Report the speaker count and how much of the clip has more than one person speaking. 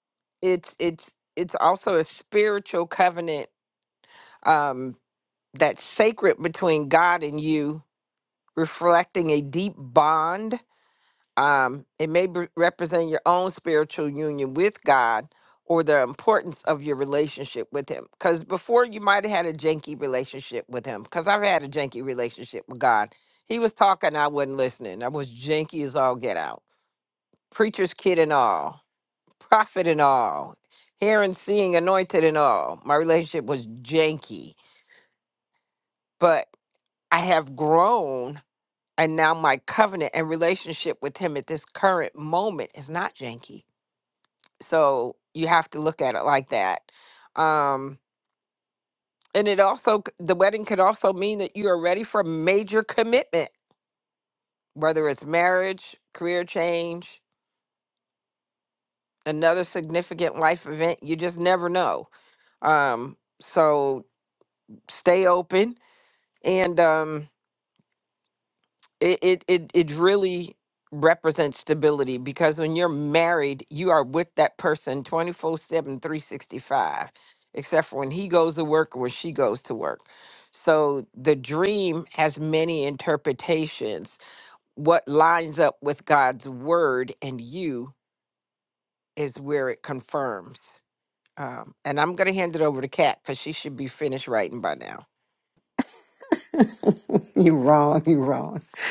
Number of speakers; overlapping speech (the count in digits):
2, no overlap